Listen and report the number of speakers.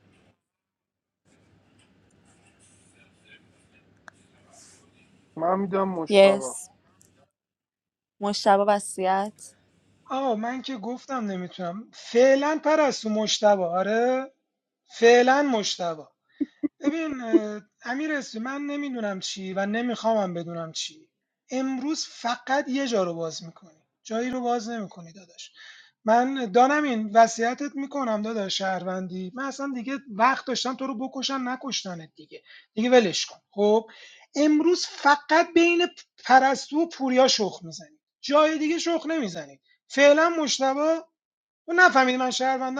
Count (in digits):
3